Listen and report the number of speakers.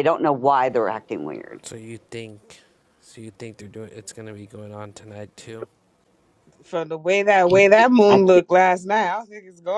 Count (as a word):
three